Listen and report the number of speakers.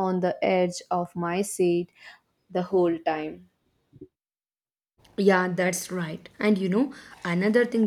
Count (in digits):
2